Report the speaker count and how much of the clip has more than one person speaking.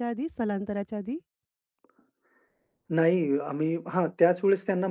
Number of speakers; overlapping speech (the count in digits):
2, no overlap